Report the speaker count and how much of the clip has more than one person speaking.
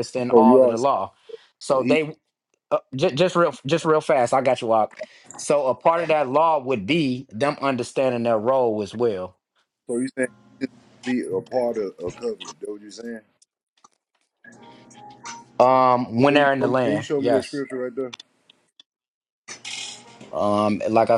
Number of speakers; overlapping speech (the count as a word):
two, about 9%